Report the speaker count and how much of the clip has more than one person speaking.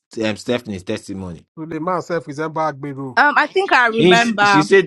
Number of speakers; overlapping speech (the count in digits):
3, about 14%